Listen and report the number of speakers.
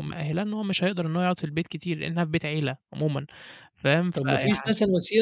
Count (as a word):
two